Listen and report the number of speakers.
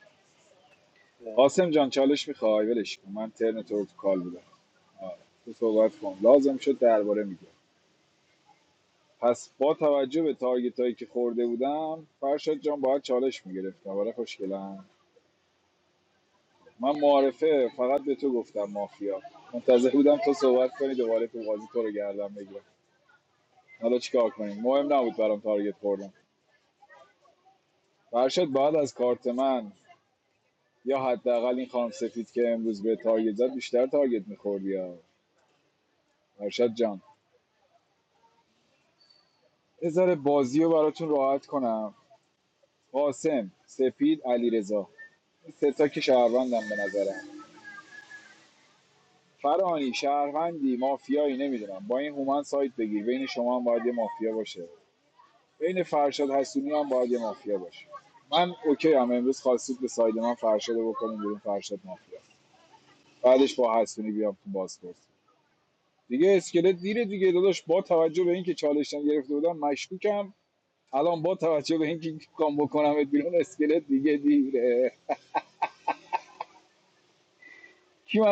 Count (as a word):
one